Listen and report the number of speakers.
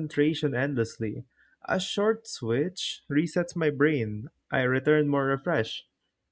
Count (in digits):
1